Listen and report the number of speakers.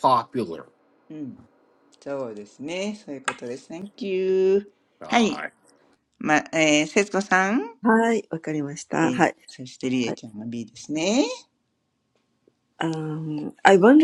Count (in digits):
3